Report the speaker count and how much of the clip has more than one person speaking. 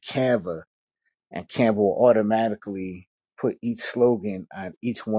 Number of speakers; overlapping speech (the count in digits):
1, no overlap